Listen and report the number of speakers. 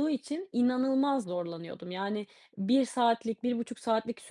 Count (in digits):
1